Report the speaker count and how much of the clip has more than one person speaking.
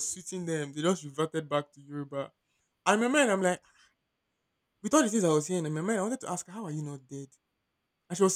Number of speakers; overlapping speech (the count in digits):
1, no overlap